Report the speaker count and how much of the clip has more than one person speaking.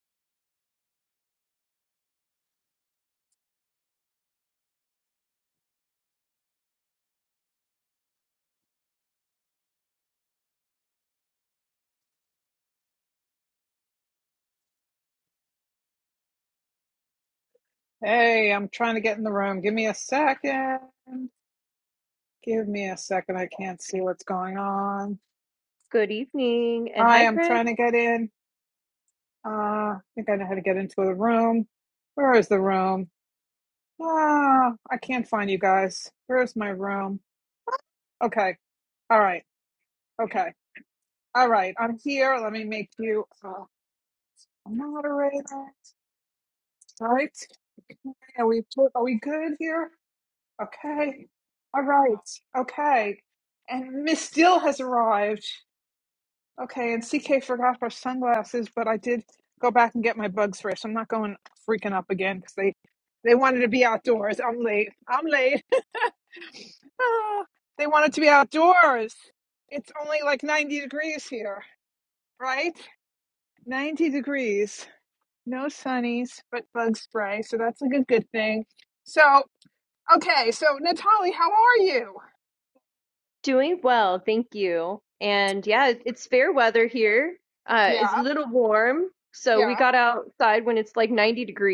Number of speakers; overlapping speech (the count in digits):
2, about 1%